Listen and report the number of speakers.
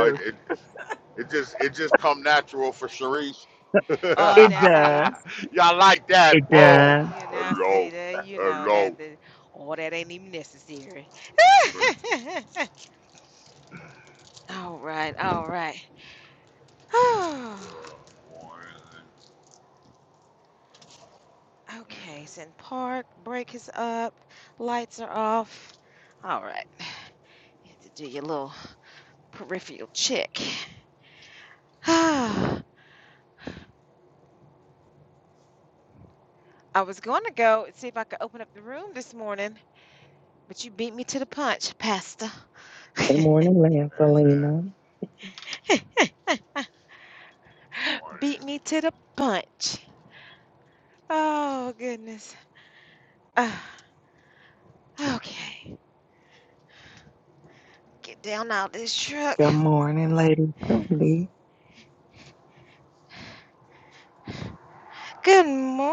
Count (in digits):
3